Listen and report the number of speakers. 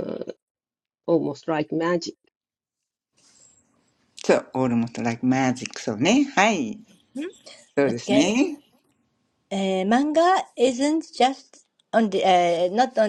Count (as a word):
three